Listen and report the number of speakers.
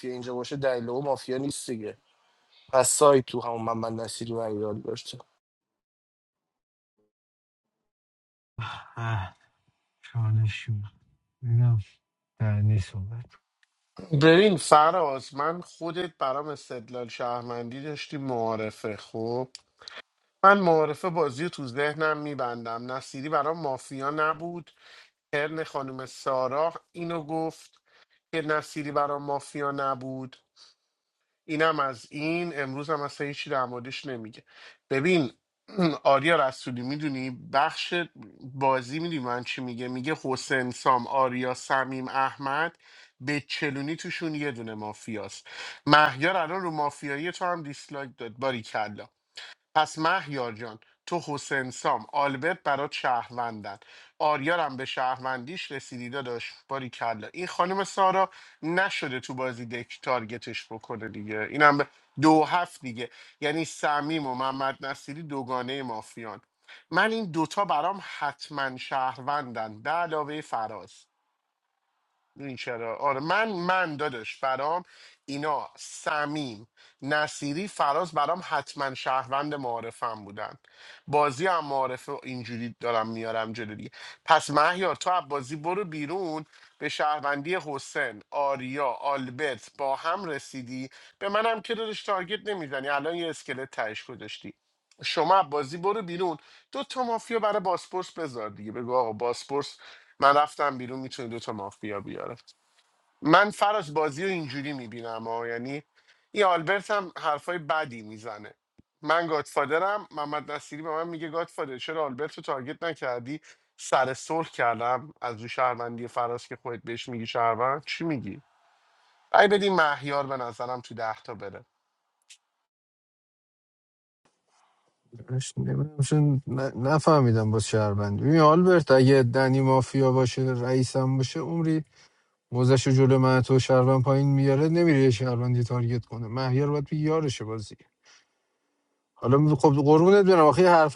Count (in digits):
3